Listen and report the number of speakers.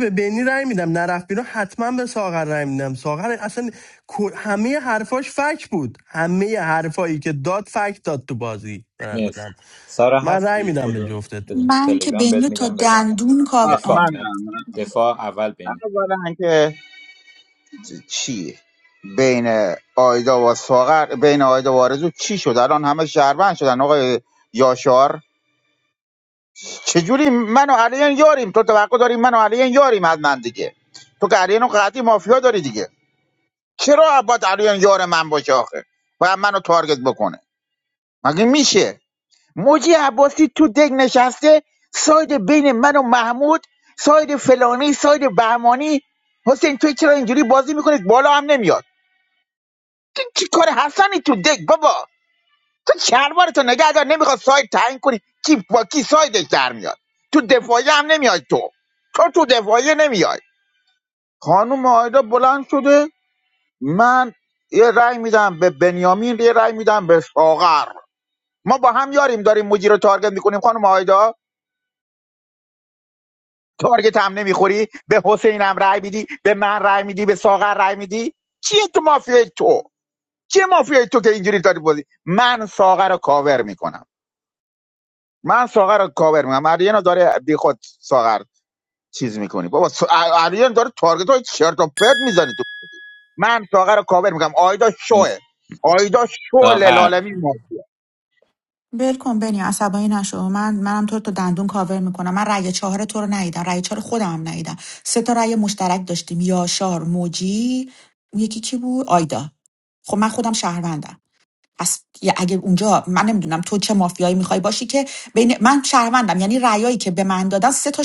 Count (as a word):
four